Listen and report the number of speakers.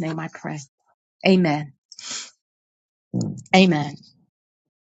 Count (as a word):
one